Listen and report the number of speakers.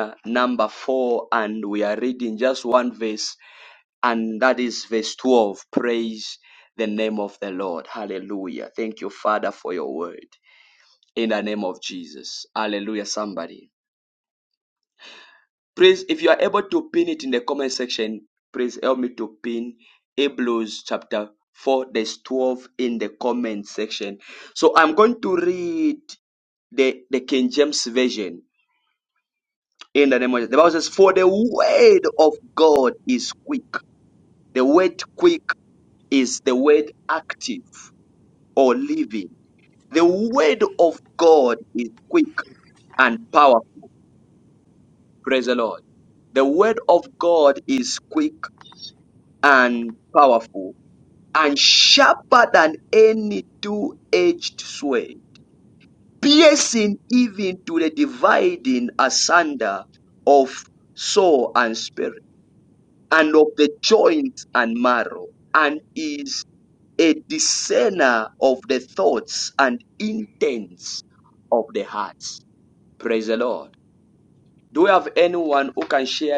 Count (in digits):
1